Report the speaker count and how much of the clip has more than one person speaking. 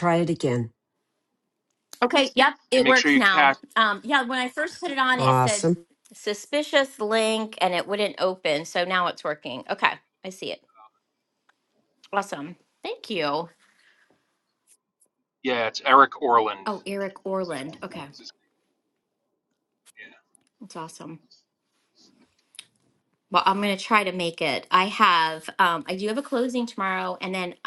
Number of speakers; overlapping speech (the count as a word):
three, about 5%